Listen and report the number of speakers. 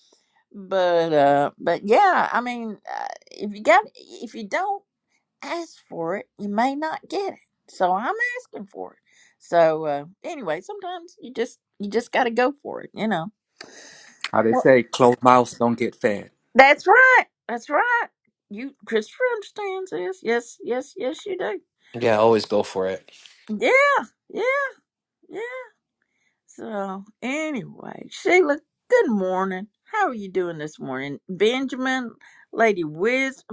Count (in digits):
3